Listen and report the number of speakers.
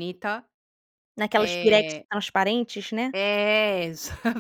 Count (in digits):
2